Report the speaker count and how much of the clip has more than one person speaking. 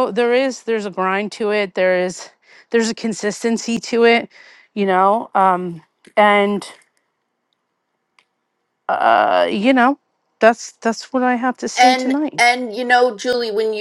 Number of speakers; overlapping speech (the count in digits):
2, about 5%